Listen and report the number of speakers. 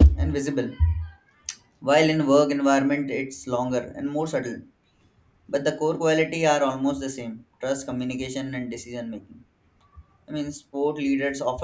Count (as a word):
one